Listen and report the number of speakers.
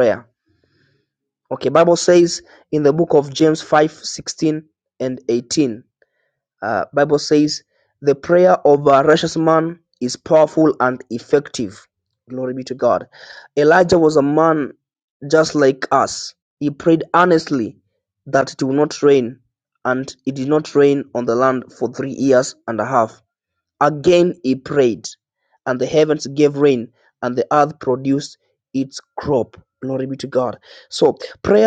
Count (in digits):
1